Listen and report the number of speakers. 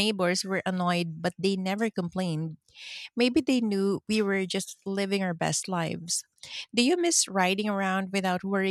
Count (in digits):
1